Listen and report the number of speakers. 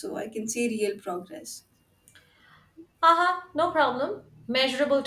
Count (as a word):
two